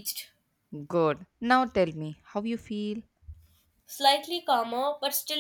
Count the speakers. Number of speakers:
two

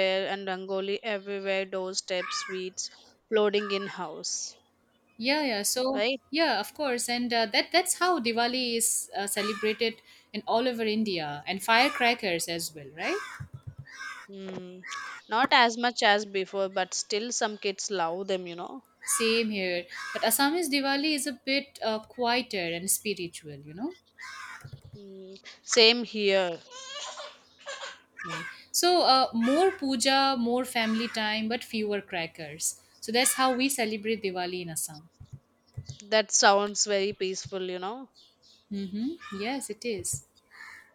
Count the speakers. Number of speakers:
two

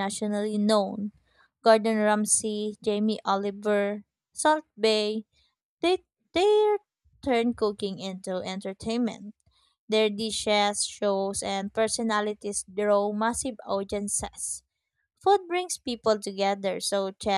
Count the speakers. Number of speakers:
one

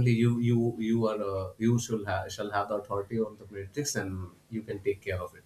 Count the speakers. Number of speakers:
one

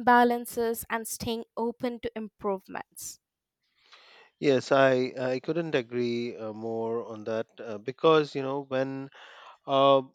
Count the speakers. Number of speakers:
two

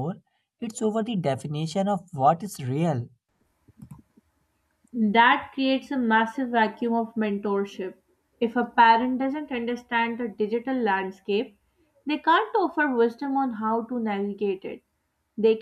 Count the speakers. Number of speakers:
two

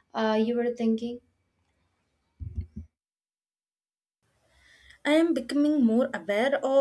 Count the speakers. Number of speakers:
two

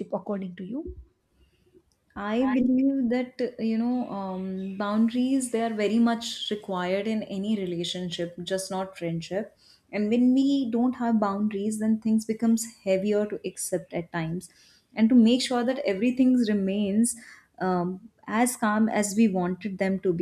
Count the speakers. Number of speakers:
two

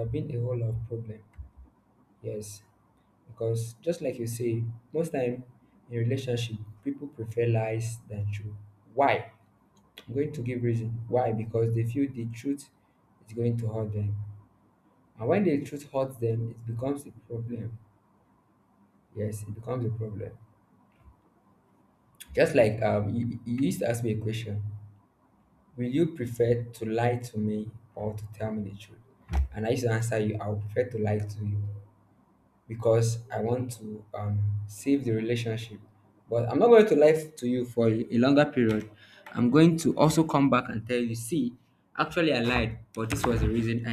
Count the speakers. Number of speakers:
one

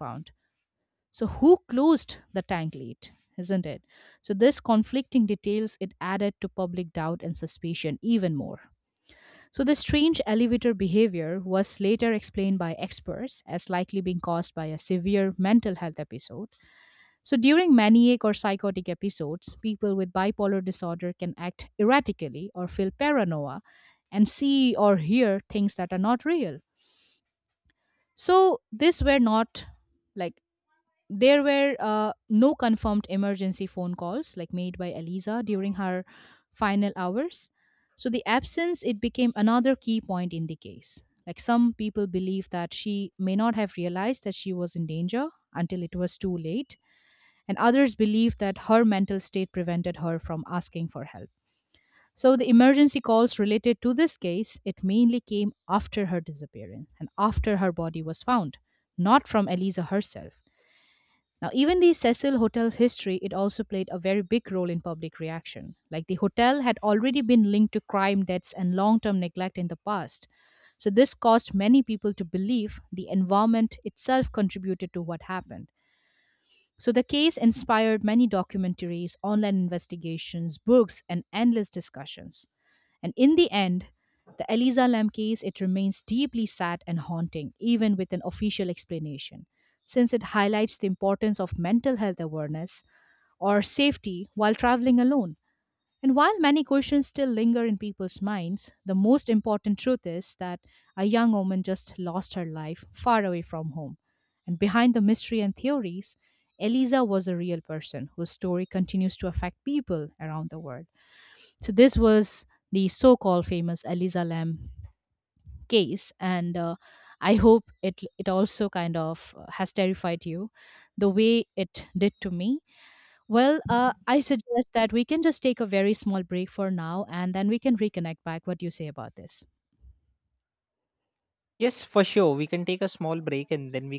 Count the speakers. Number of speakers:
two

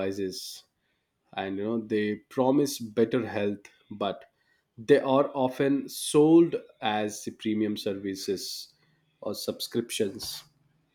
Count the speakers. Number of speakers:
one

